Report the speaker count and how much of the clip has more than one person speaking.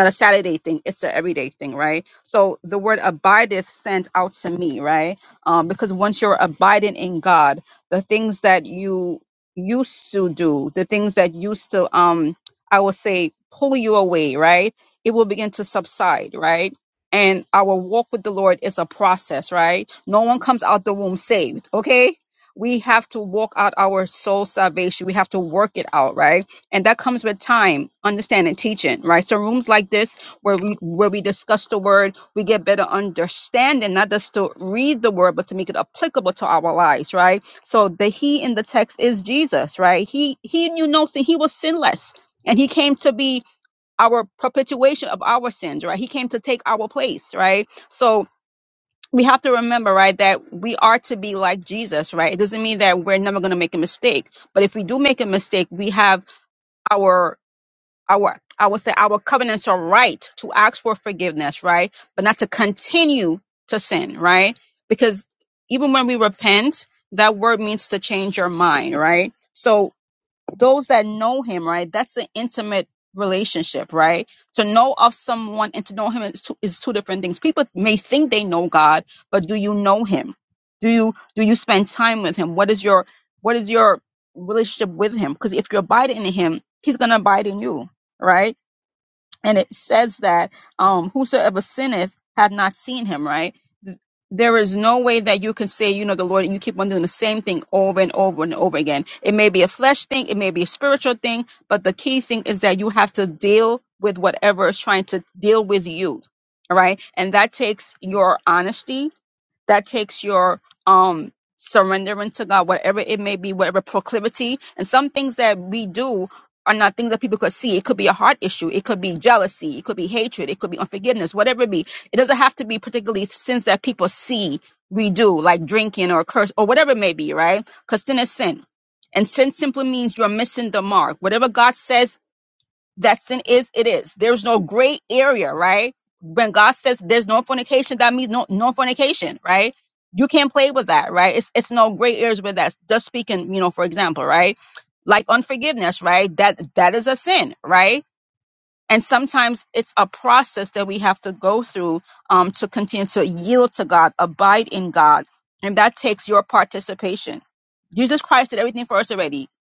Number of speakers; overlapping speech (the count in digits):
1, no overlap